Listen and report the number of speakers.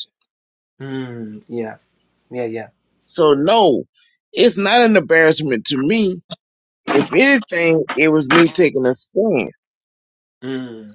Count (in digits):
2